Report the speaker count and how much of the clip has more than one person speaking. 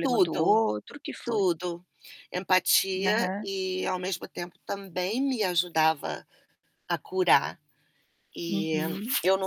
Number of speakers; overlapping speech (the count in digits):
2, about 16%